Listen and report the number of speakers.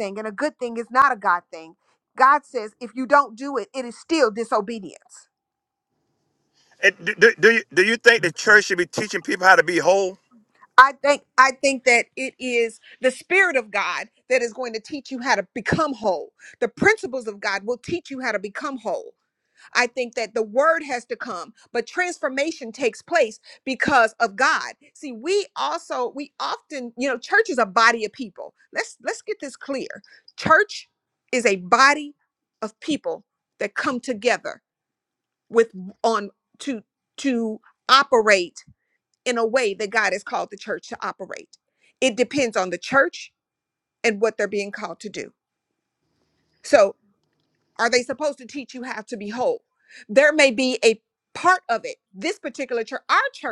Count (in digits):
2